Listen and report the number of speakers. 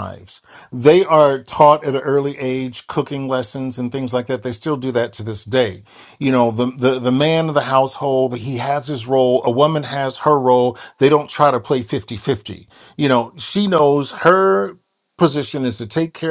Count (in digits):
1